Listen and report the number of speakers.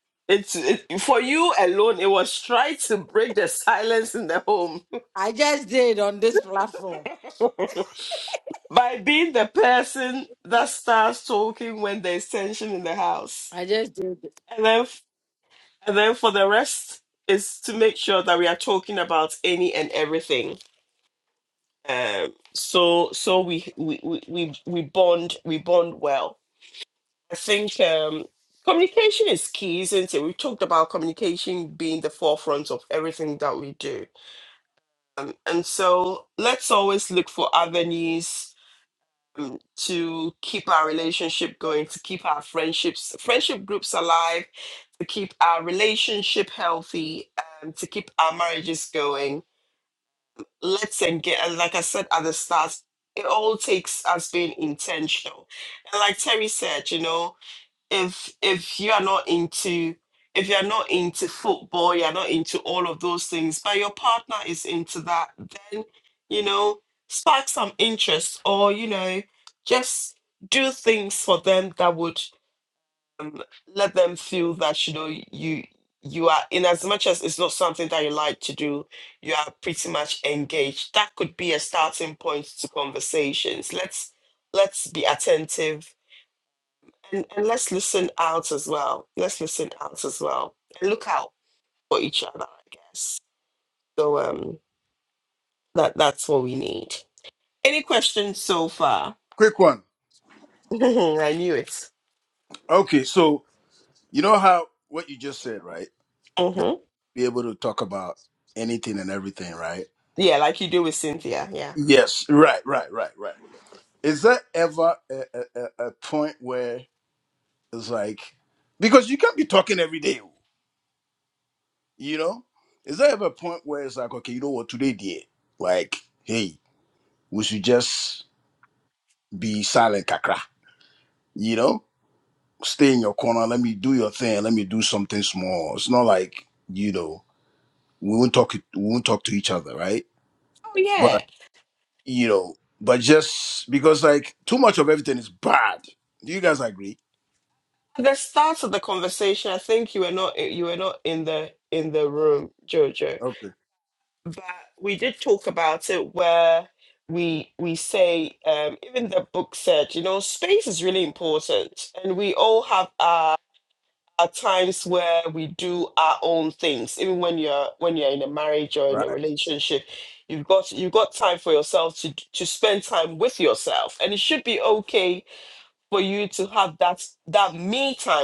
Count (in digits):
3